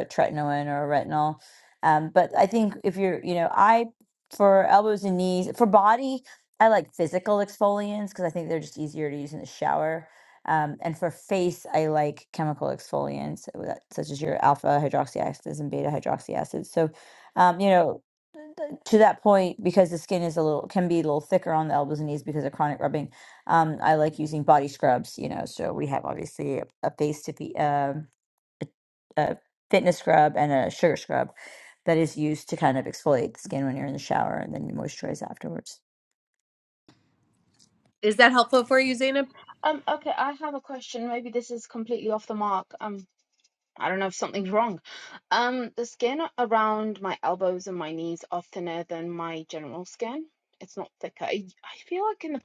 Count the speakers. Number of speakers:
3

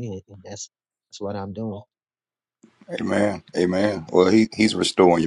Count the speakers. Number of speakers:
2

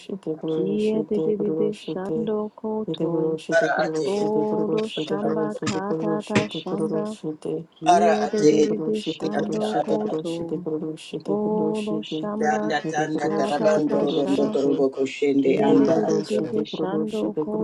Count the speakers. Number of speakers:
3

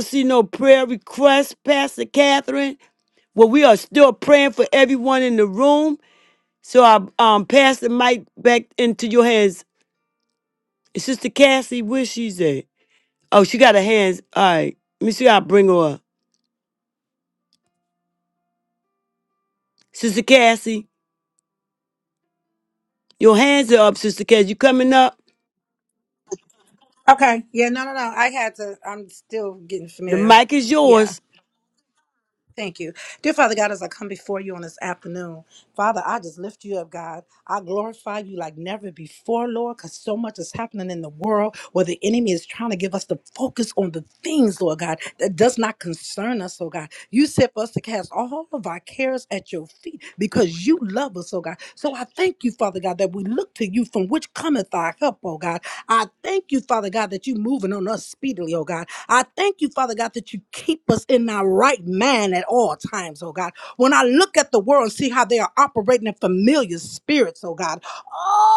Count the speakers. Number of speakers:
2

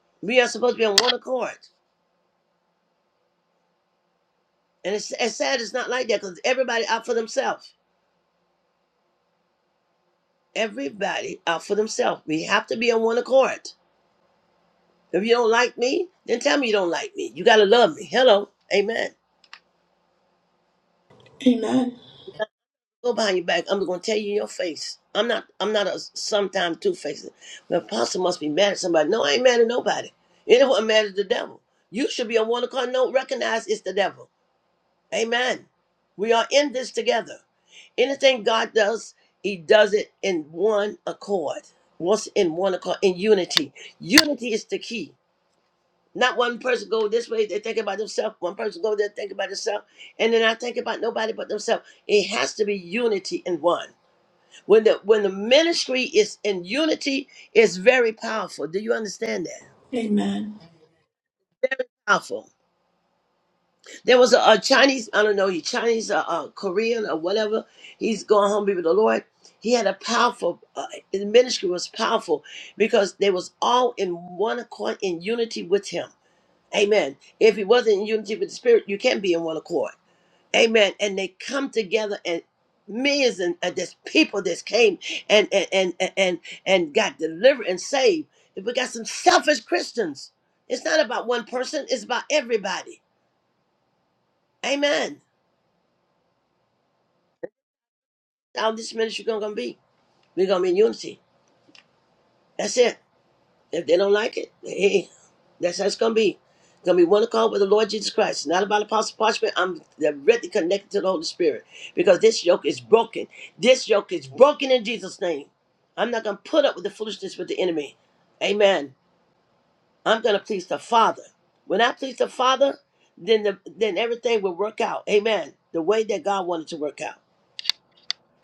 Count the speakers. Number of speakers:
2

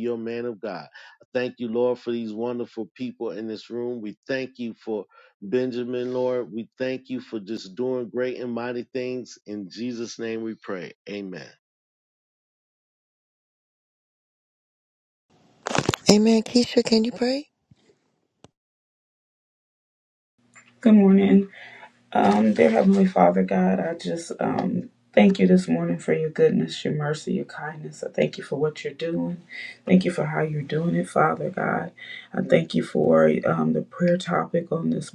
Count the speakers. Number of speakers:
3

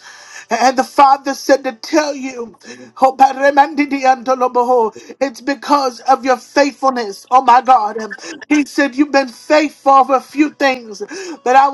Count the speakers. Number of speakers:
1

